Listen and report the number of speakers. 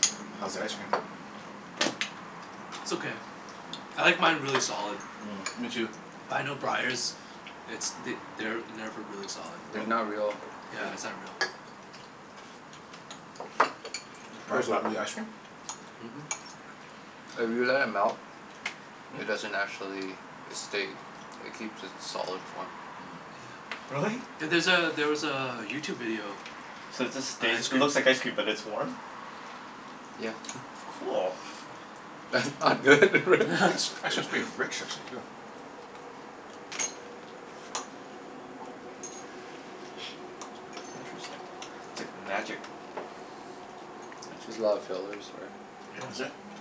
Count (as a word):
four